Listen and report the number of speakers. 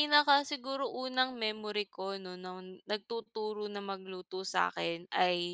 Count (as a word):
one